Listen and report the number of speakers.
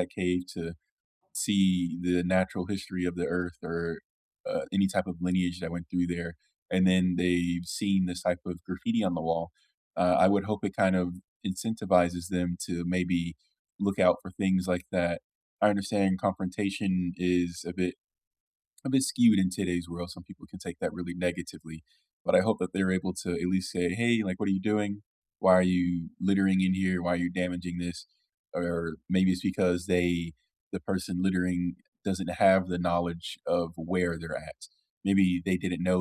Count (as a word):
one